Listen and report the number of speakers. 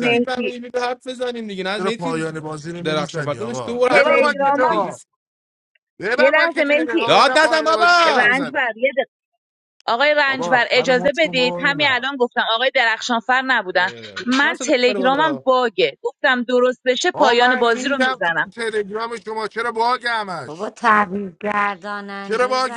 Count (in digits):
4